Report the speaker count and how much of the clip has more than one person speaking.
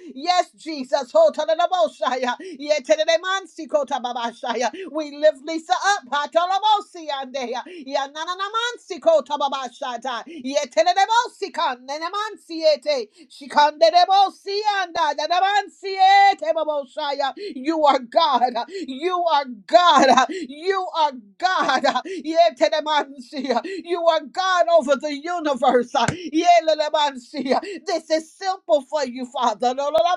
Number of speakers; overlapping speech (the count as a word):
one, no overlap